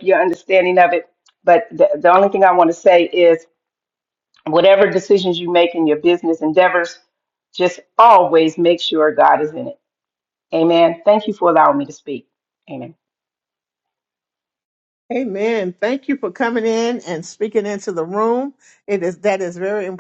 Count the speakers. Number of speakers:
two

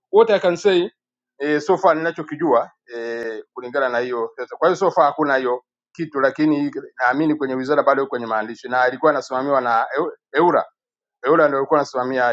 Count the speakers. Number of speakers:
one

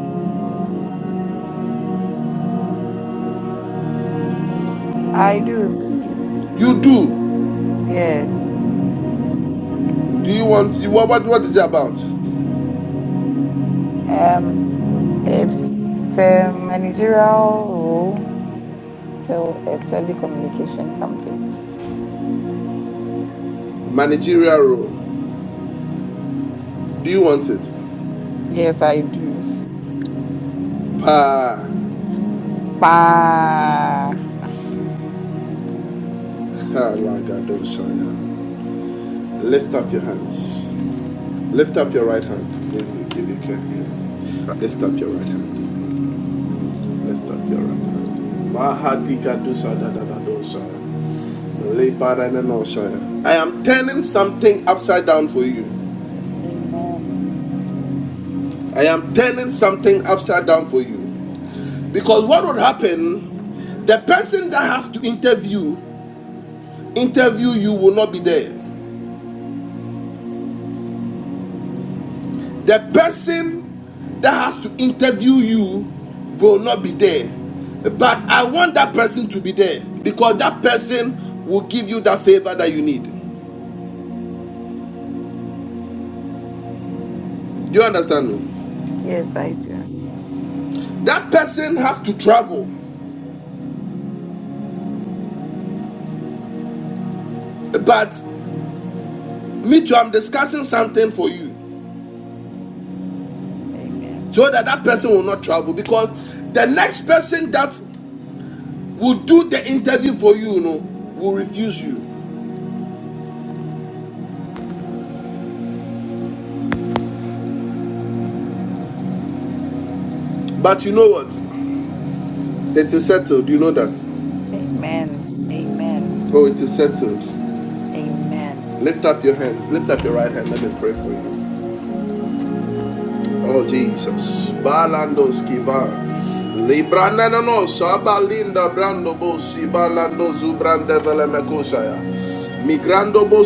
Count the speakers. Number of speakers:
two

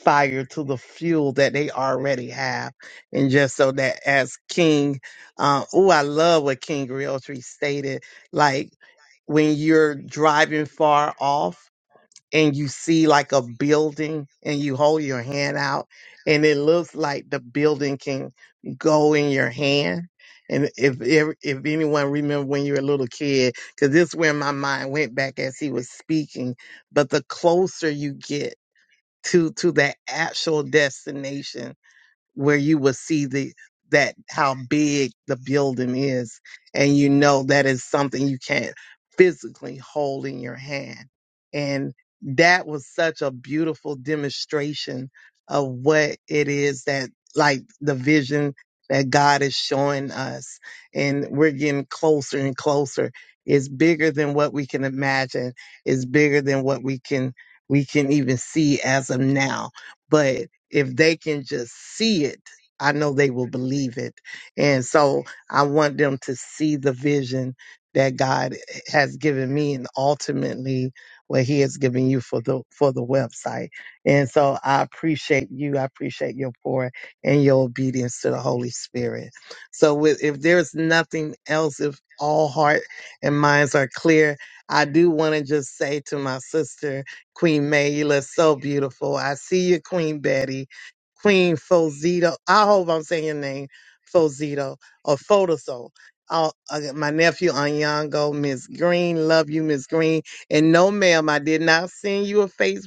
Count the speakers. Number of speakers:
one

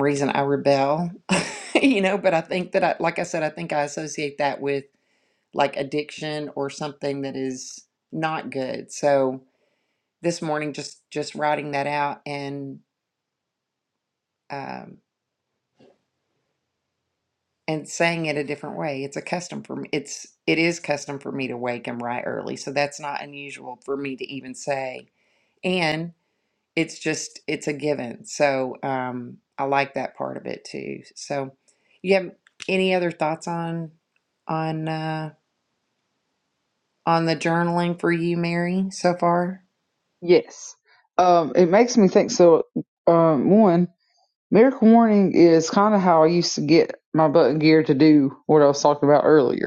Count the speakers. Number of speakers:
two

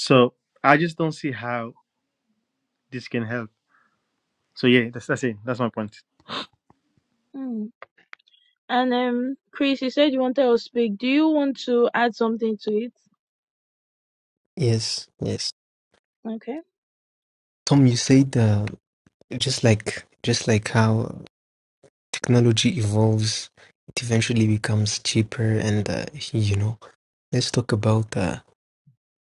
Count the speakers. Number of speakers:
three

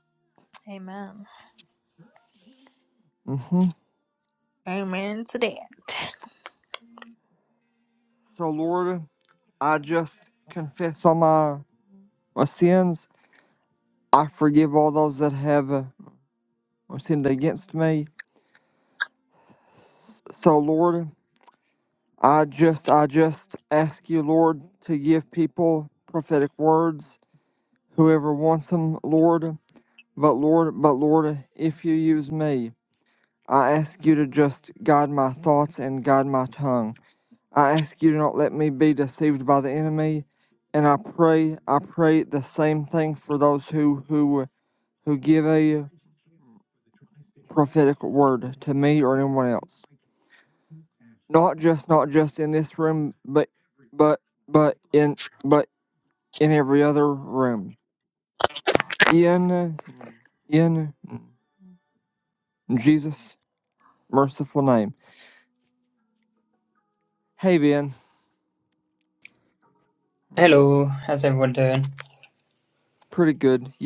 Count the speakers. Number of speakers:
three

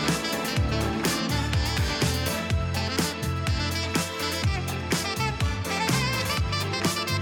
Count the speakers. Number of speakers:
zero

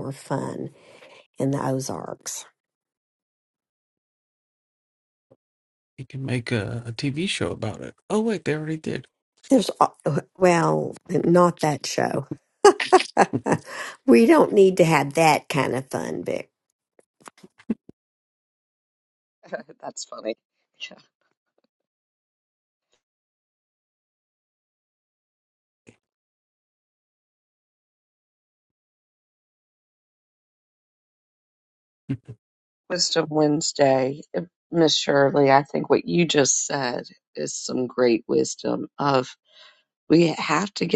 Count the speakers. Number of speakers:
three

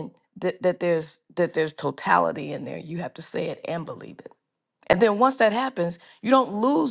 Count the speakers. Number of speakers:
one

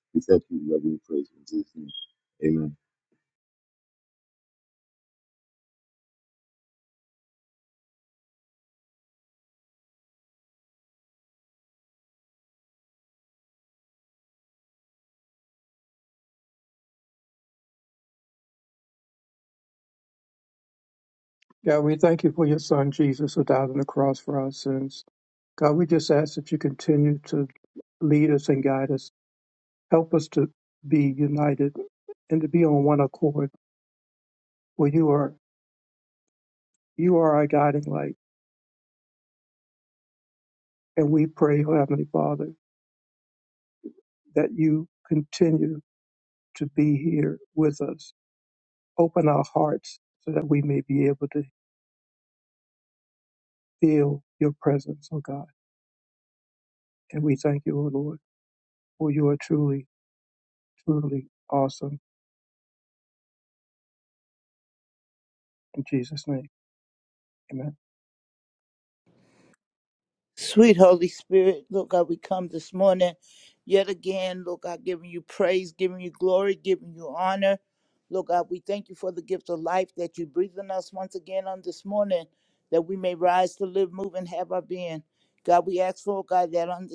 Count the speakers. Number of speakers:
three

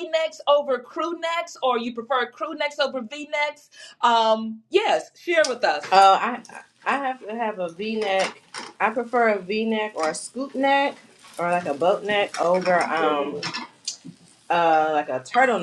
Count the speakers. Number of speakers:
two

